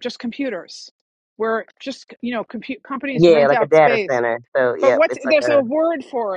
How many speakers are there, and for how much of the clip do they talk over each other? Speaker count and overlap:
2, about 27%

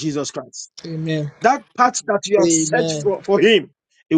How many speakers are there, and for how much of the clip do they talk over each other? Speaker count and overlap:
2, about 18%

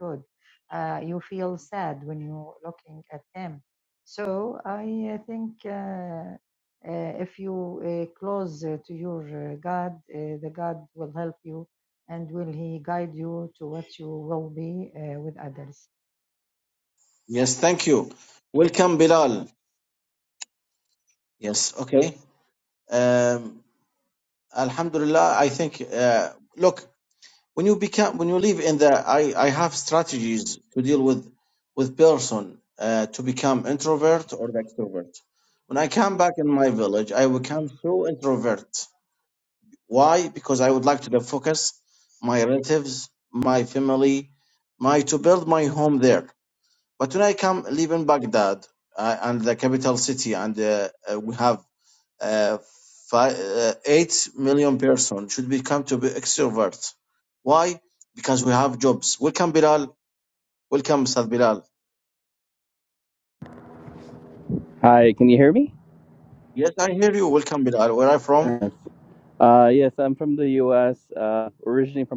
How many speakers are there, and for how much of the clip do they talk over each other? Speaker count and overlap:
3, about 1%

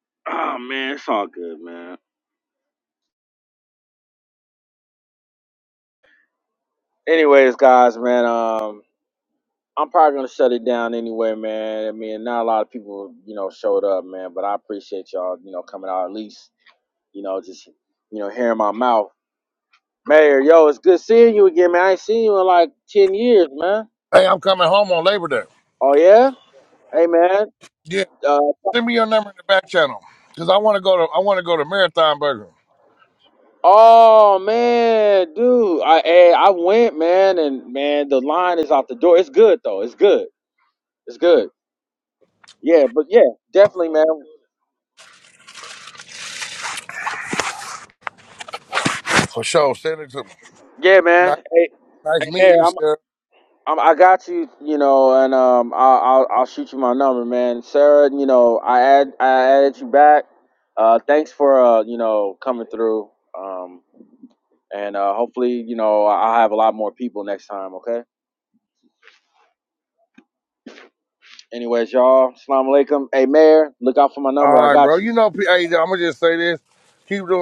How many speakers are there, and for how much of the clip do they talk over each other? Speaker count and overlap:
2, about 2%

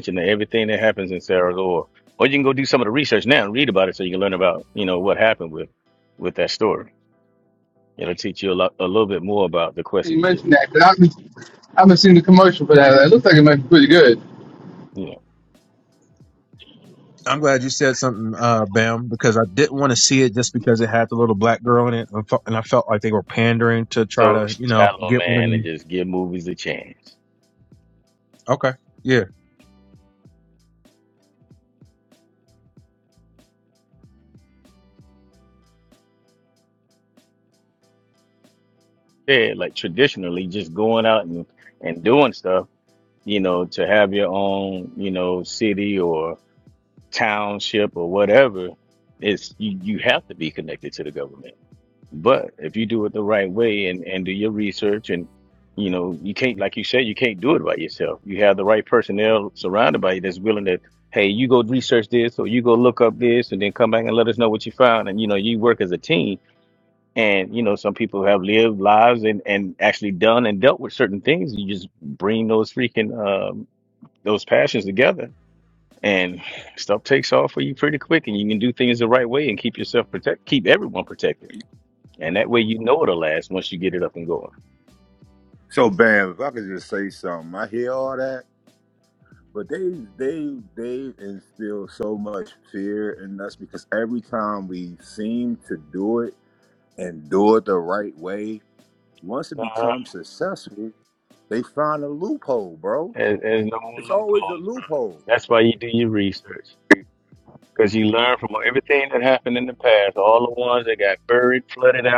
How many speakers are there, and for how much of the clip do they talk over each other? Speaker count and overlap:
4, about 3%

